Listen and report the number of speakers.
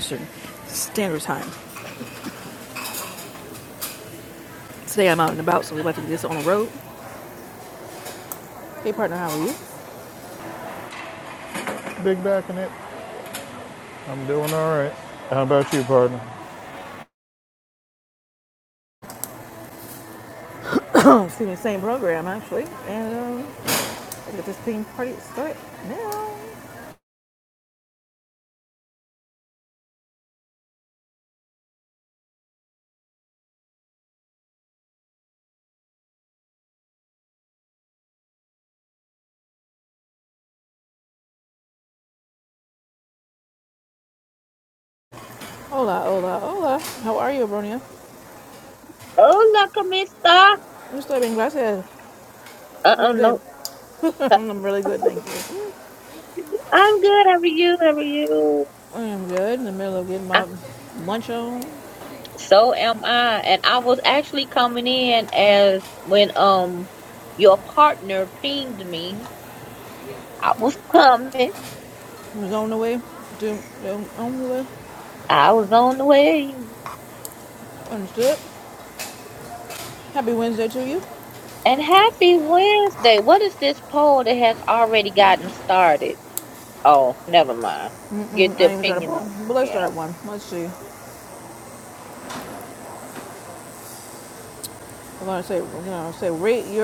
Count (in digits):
3